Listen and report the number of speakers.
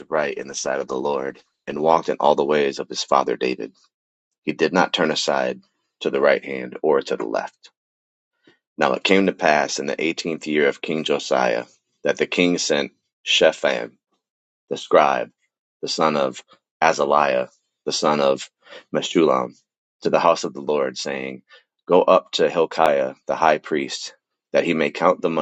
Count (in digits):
1